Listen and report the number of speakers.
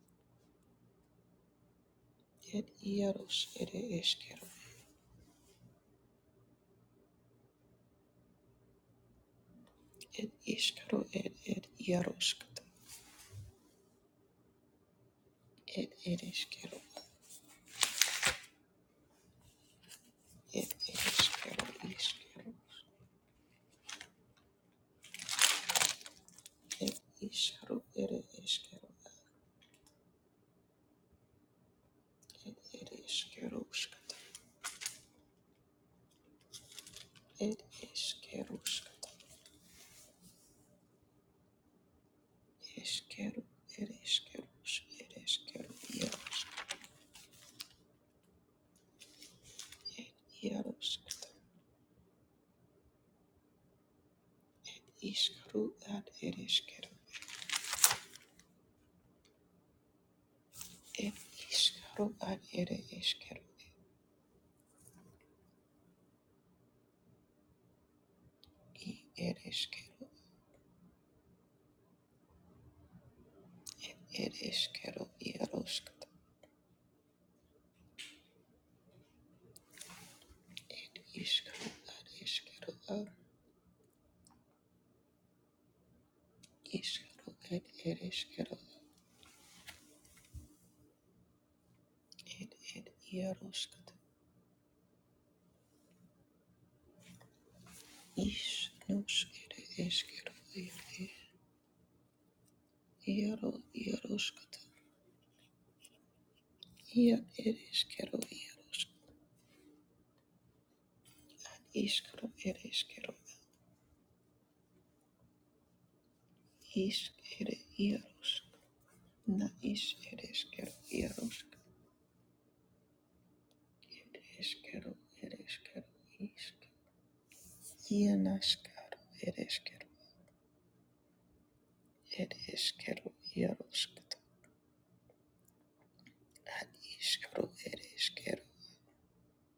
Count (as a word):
one